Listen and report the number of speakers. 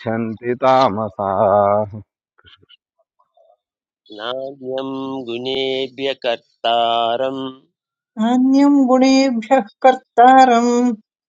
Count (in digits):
3